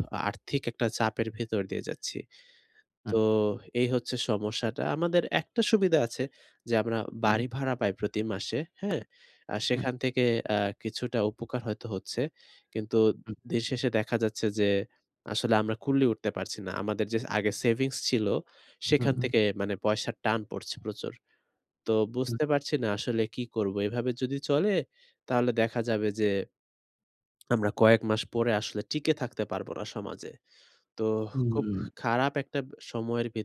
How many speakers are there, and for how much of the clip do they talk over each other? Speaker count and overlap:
two, about 3%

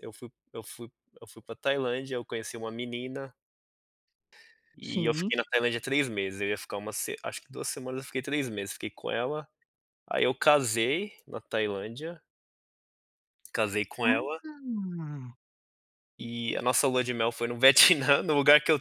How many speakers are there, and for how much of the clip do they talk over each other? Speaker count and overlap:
two, about 4%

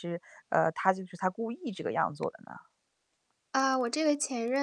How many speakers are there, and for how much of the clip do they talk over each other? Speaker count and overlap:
two, no overlap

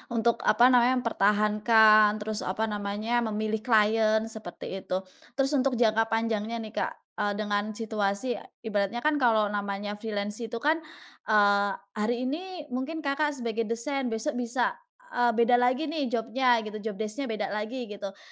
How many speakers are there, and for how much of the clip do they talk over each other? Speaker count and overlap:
one, no overlap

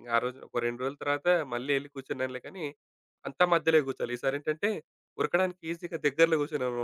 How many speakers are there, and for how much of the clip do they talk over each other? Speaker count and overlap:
one, no overlap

